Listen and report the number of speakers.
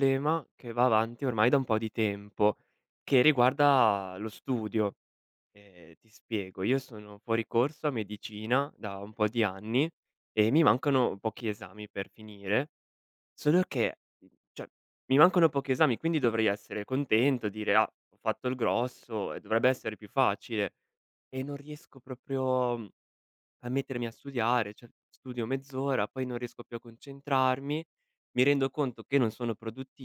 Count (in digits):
1